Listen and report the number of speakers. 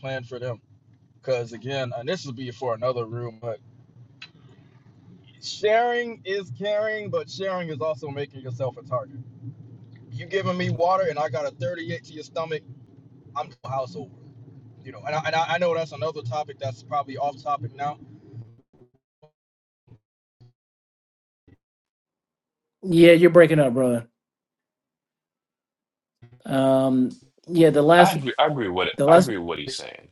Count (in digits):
3